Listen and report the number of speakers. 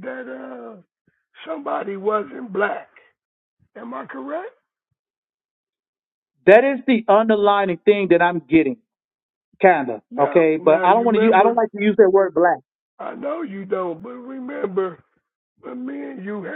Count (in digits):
2